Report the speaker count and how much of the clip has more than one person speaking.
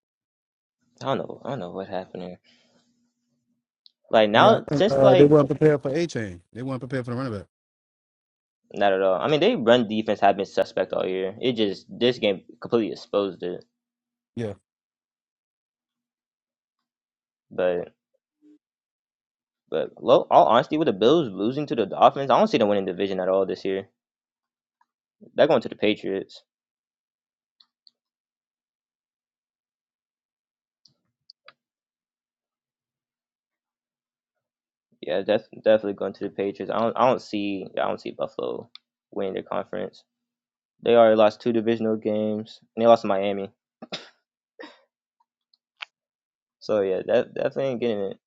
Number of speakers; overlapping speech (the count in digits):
2, about 2%